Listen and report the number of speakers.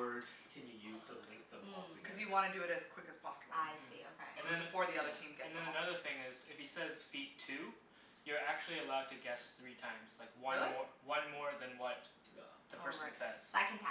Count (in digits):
4